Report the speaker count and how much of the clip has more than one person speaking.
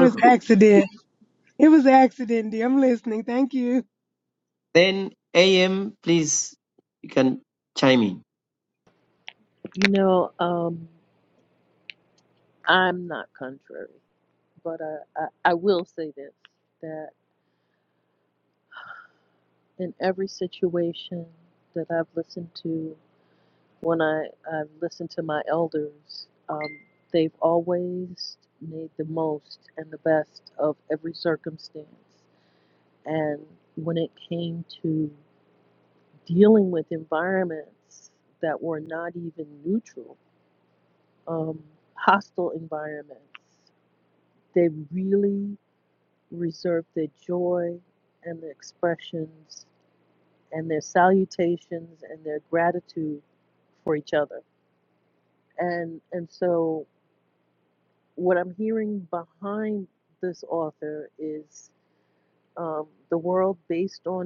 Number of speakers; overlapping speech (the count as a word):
three, under 1%